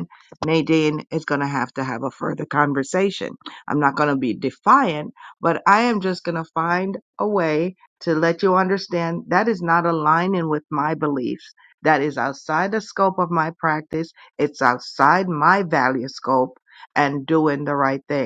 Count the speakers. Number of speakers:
1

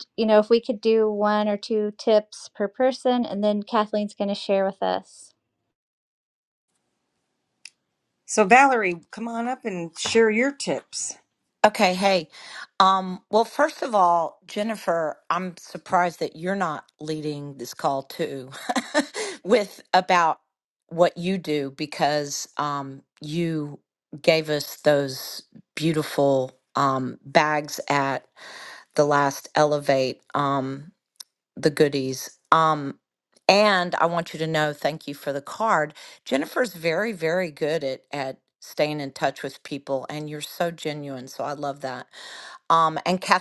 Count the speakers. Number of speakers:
3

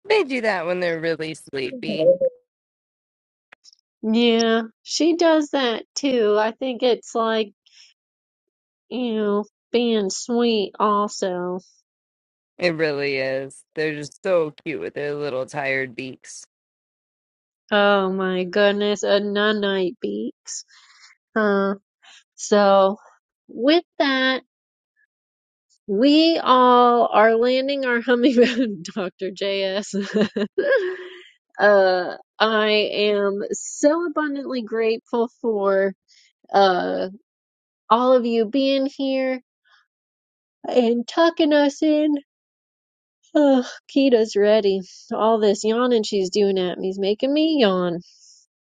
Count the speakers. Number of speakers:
2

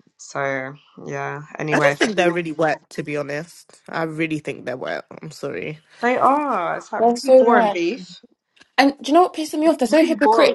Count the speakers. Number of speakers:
3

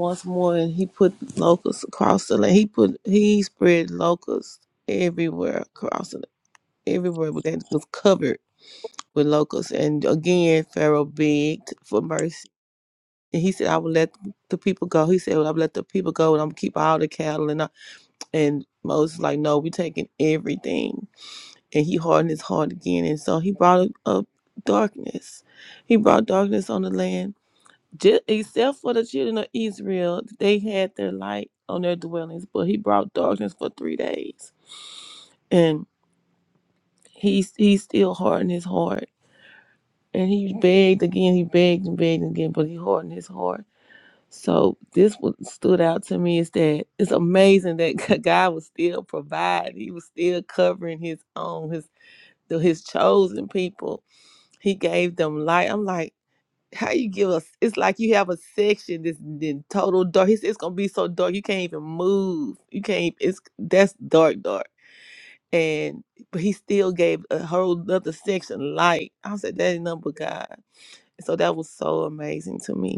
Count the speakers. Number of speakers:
1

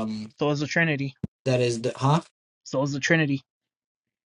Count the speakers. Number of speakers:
2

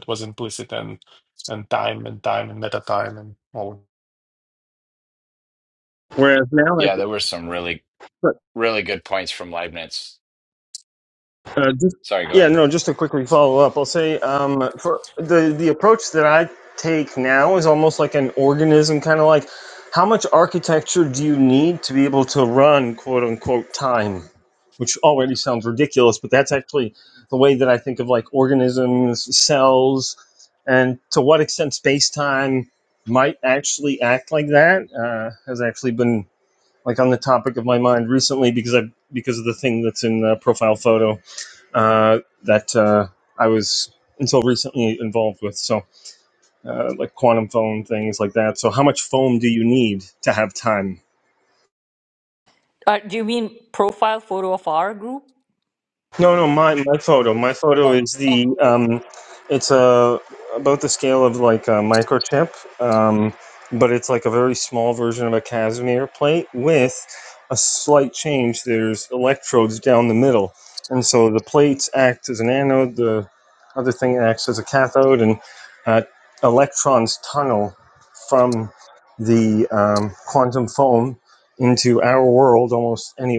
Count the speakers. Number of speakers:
4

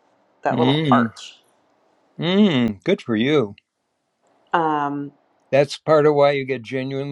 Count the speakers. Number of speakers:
2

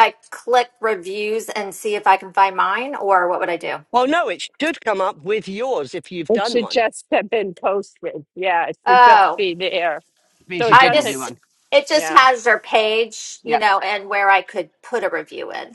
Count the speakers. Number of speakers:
3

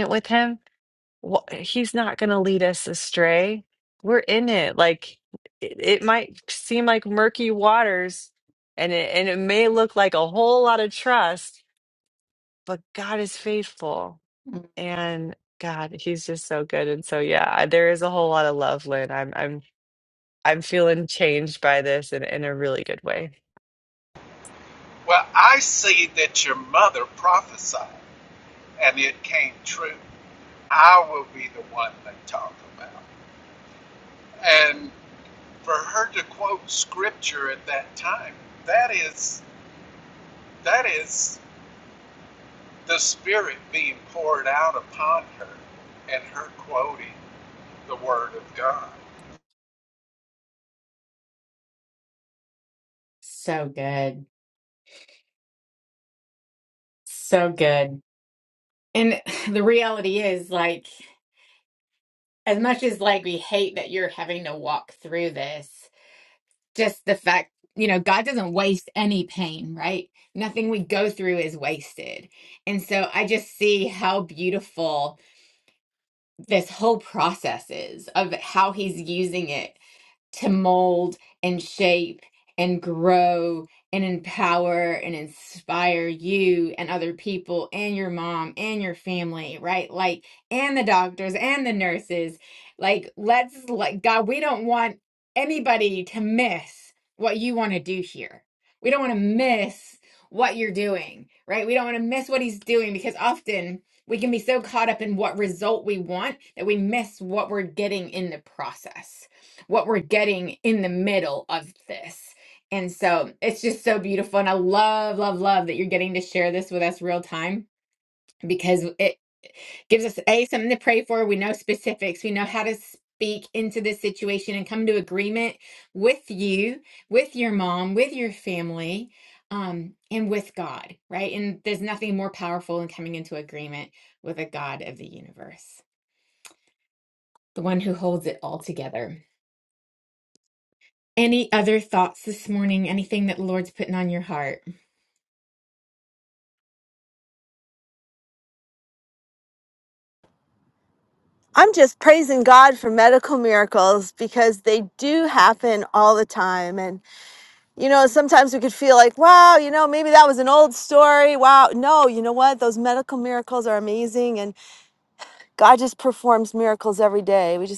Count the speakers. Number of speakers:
4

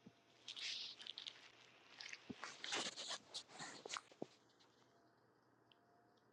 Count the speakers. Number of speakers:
0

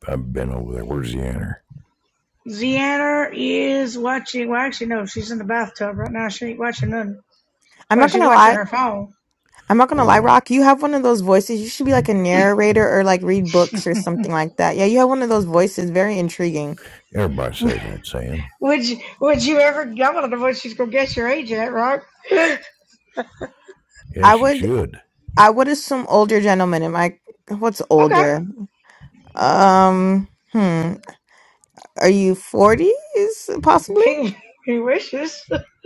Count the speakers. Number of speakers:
3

